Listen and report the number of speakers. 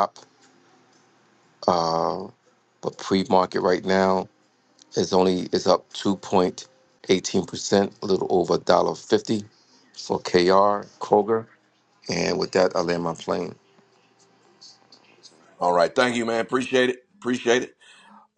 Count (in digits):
2